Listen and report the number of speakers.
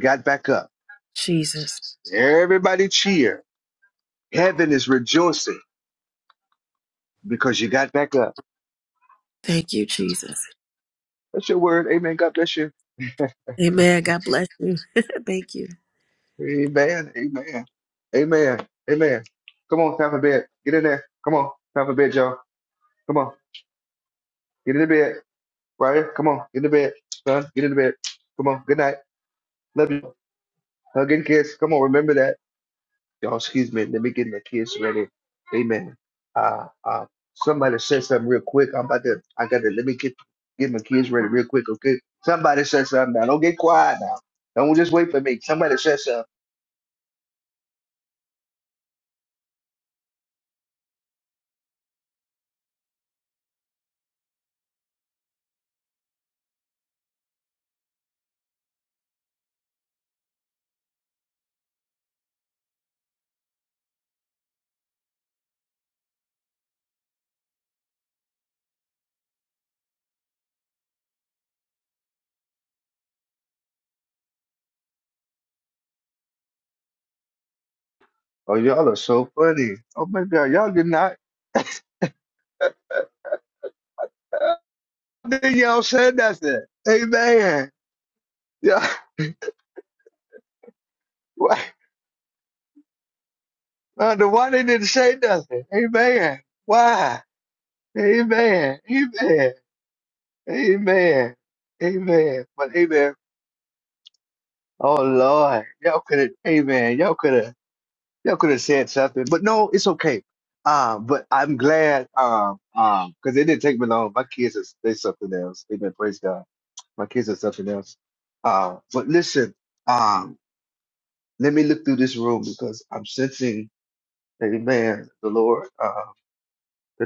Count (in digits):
2